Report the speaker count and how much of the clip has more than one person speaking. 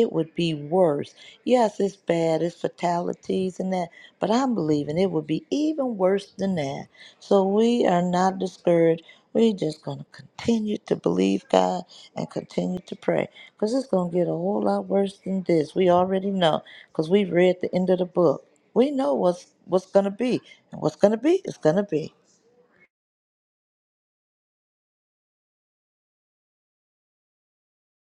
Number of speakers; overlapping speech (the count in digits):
1, no overlap